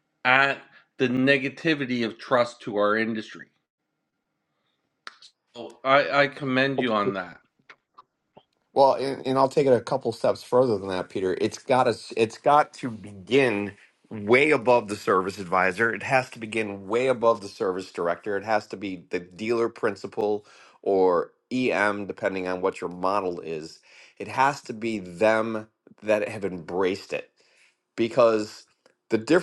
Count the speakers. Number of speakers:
two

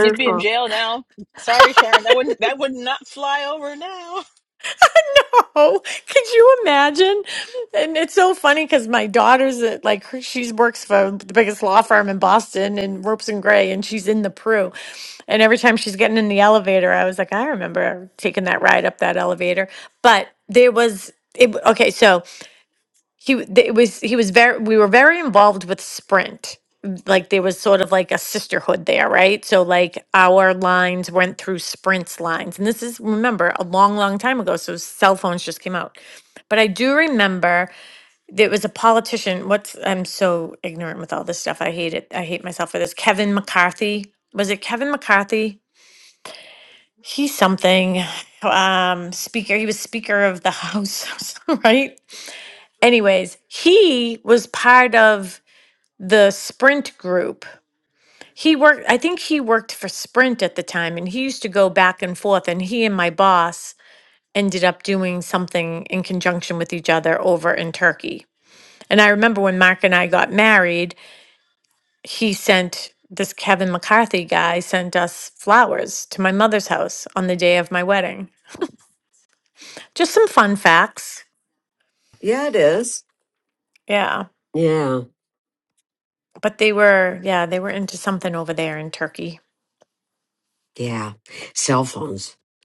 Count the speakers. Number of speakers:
three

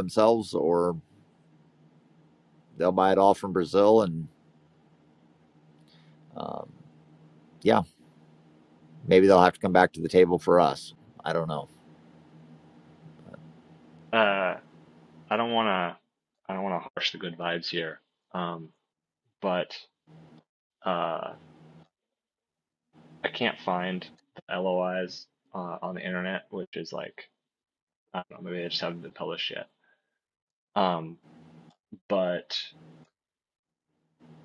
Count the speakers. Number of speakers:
two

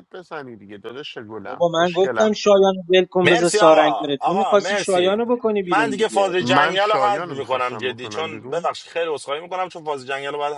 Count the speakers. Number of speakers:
three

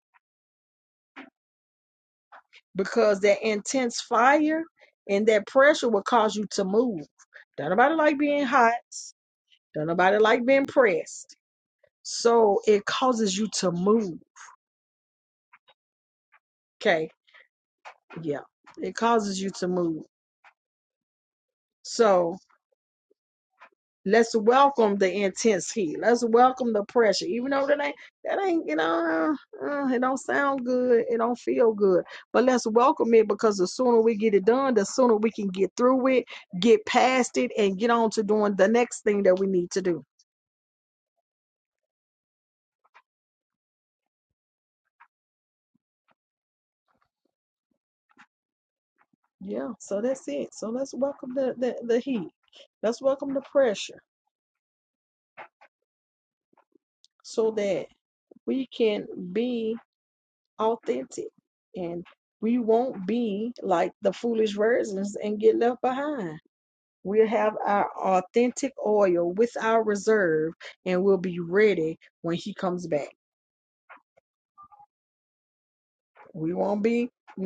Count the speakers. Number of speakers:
one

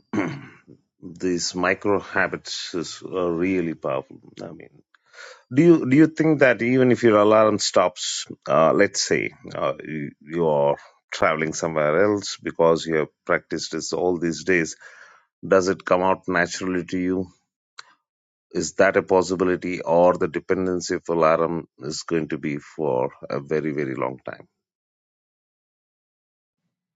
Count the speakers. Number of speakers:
one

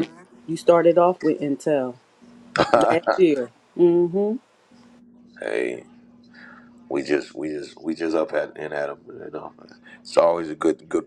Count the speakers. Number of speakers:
two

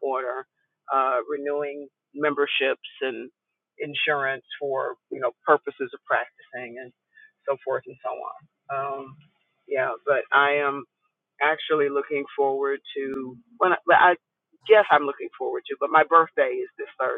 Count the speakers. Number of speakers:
one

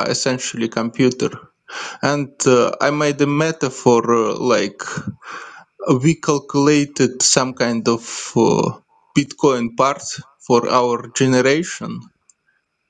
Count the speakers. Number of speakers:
one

